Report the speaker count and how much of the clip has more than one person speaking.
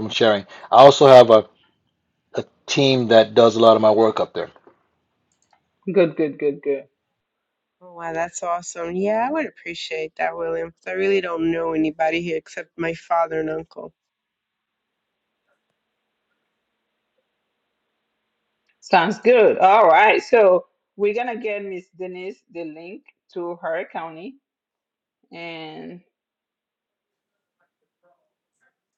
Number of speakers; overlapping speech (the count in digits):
3, no overlap